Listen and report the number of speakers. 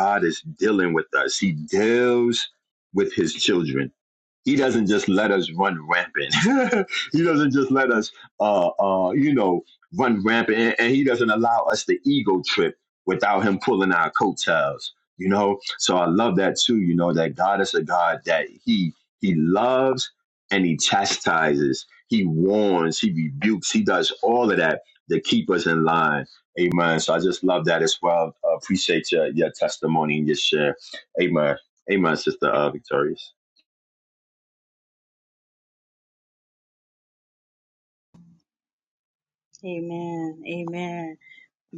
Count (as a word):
two